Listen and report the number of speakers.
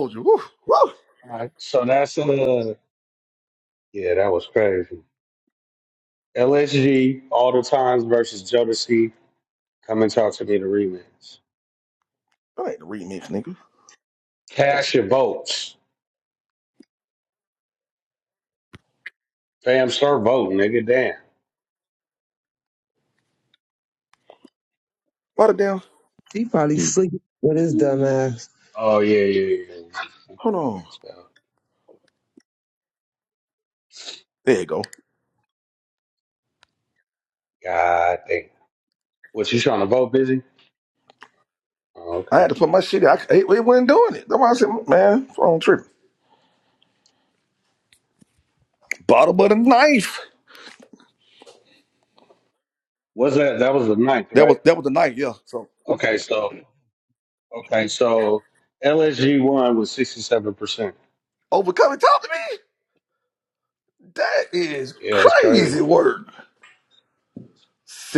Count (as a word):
three